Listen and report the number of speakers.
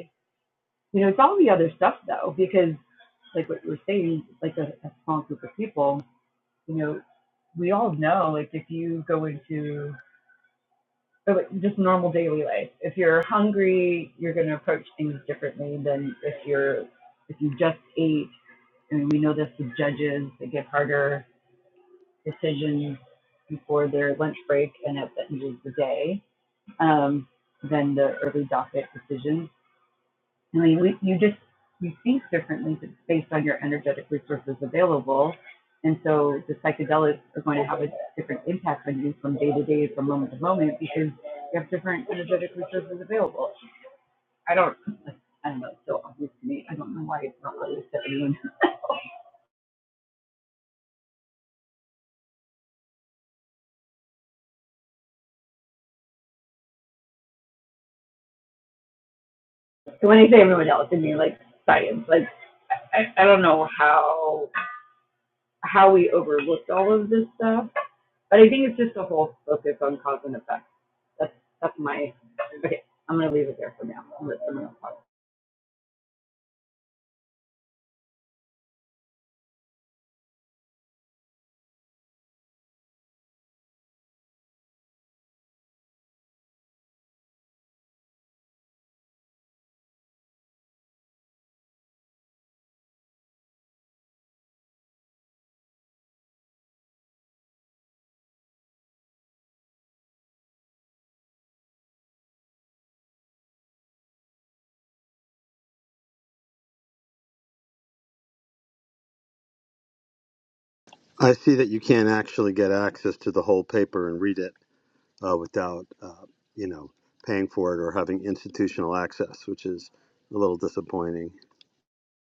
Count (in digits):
2